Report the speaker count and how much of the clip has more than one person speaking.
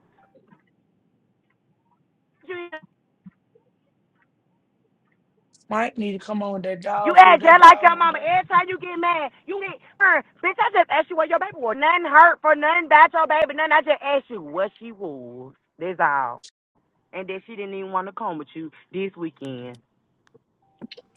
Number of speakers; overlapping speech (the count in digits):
2, about 6%